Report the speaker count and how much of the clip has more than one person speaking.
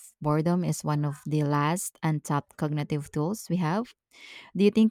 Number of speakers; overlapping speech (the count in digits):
1, no overlap